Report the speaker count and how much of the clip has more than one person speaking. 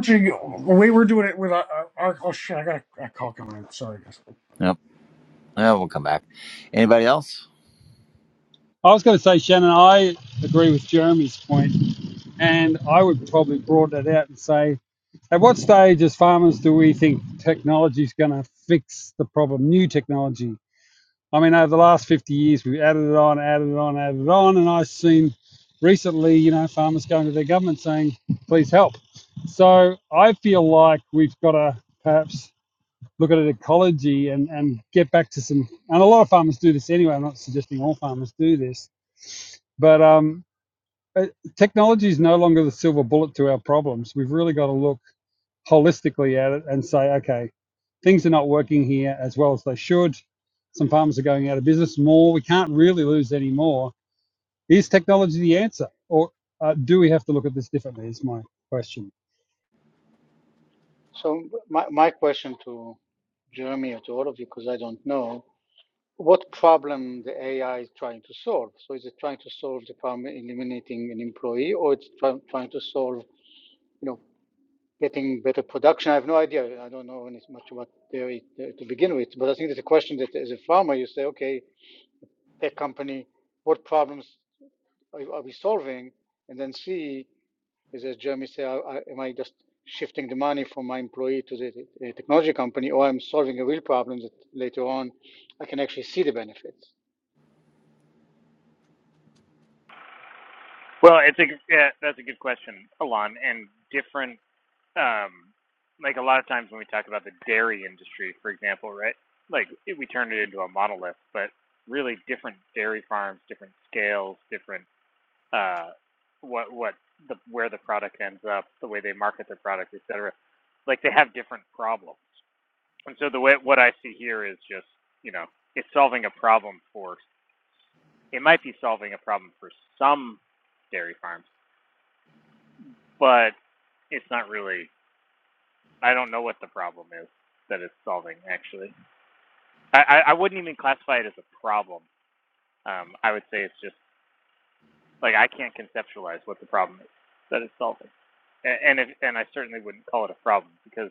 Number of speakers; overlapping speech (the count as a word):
five, no overlap